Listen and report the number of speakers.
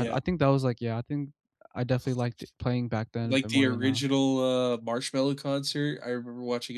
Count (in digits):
2